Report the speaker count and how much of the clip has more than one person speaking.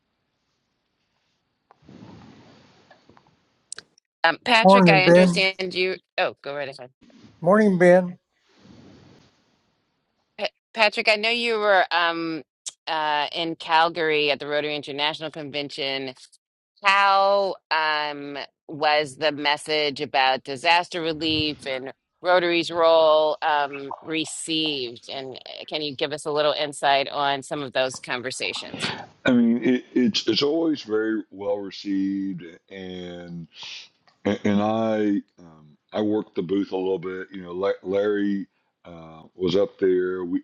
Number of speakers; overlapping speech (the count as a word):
three, about 2%